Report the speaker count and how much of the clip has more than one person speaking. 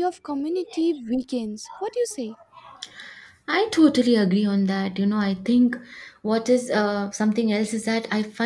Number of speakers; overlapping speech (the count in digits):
2, no overlap